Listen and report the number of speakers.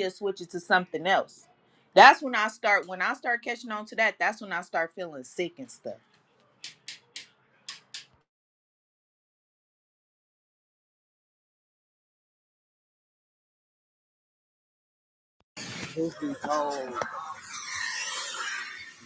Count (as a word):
two